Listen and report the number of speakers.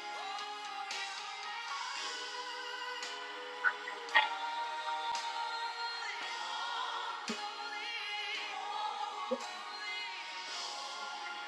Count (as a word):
zero